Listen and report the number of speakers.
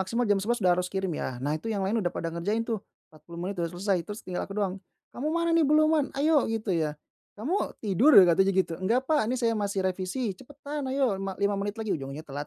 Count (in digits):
1